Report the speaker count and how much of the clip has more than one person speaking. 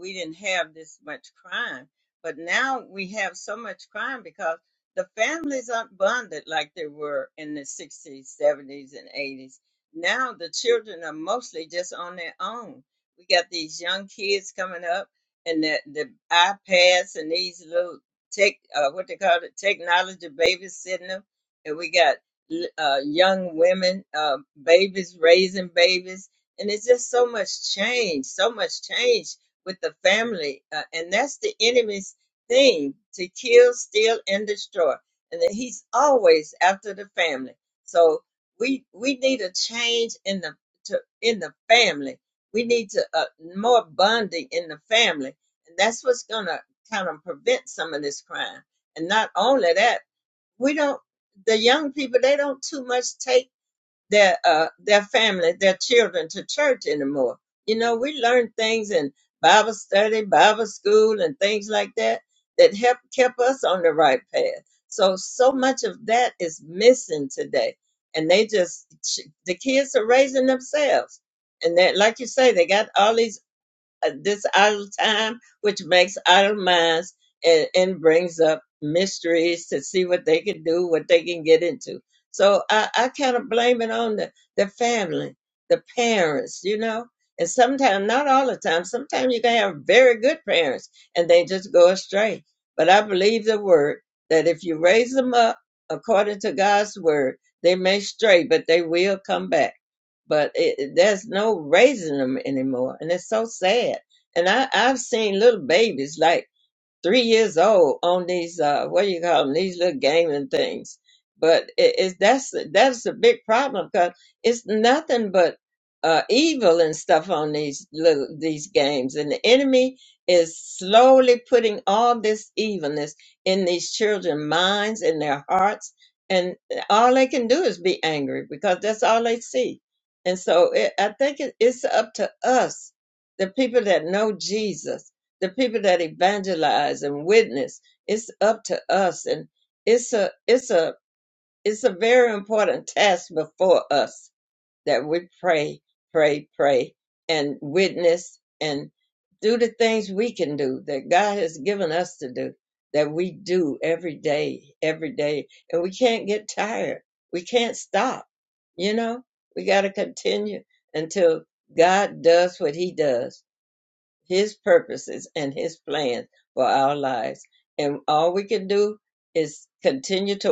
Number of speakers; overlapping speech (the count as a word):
one, no overlap